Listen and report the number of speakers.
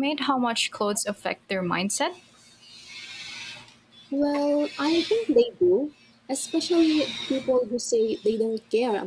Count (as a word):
two